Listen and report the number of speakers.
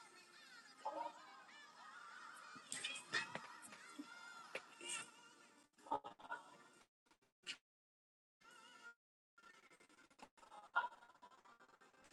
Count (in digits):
0